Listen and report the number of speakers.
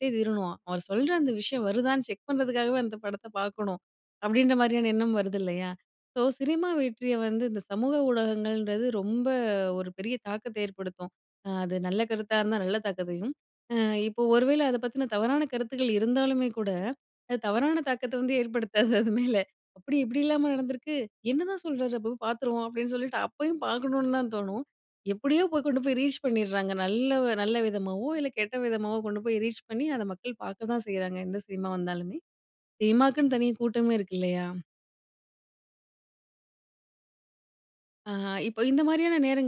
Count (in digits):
1